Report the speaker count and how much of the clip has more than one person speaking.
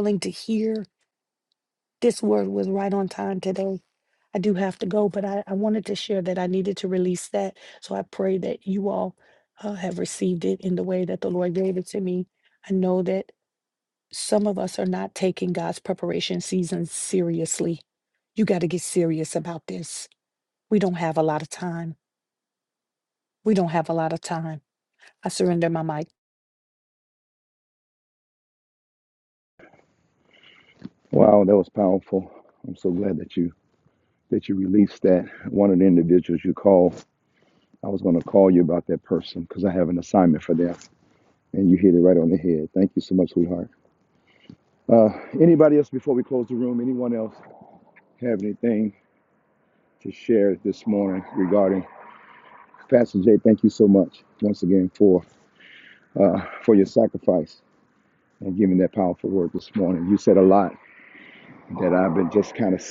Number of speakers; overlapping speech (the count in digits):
2, no overlap